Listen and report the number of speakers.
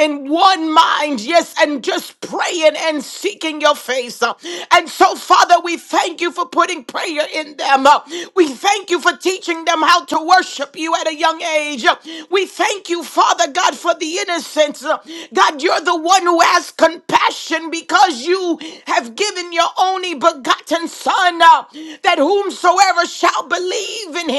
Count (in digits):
1